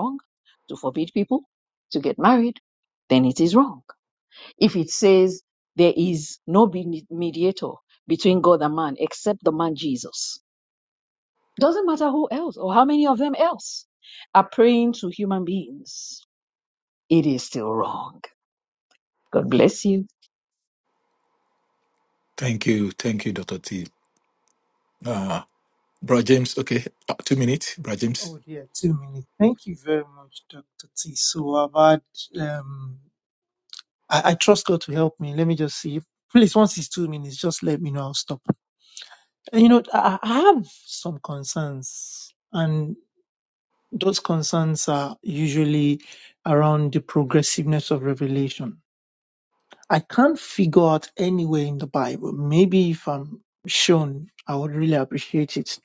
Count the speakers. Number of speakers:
3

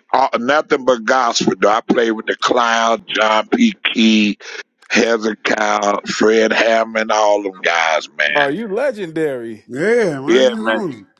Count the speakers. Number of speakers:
3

